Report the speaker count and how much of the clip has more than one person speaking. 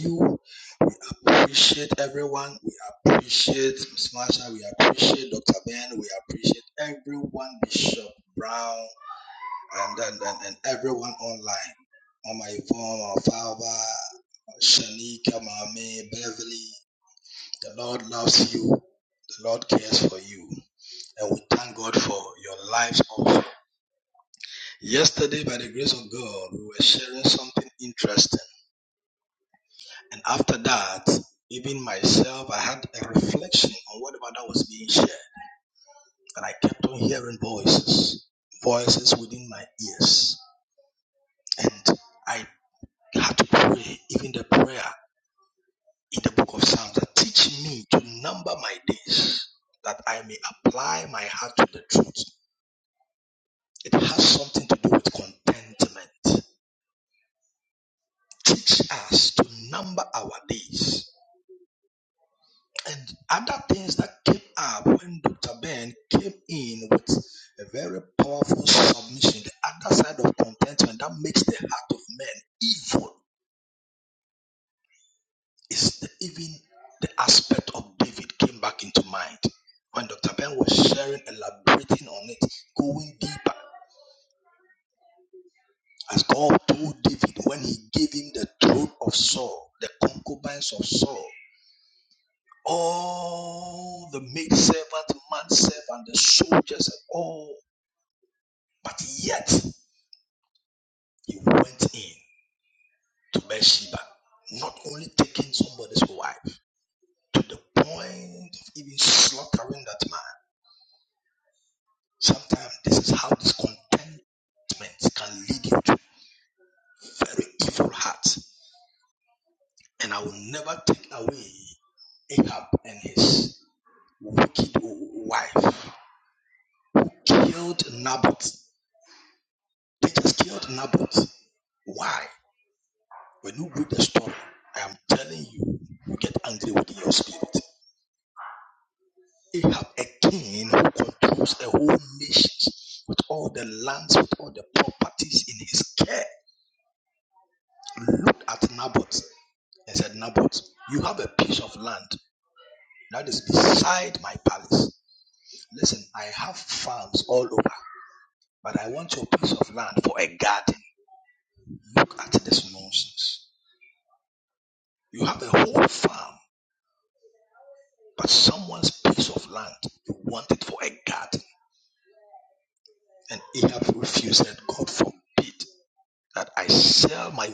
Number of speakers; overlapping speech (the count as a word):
one, no overlap